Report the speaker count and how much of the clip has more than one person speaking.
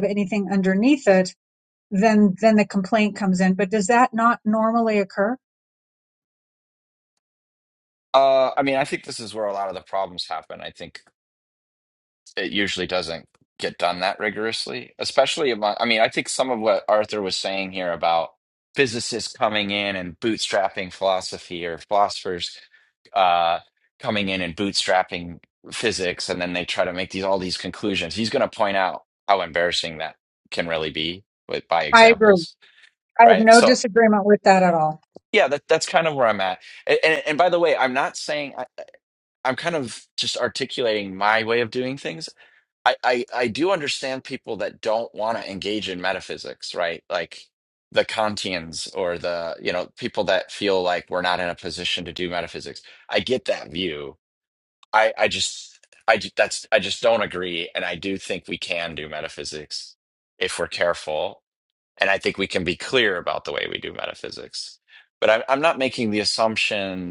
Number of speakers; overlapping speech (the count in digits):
2, about 2%